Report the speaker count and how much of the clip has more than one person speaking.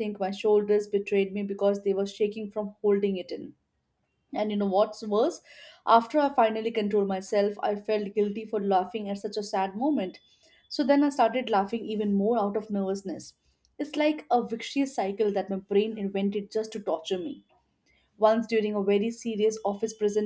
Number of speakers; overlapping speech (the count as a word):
one, no overlap